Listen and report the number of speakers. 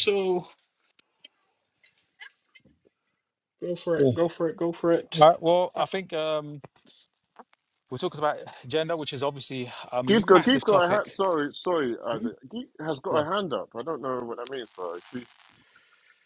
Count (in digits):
3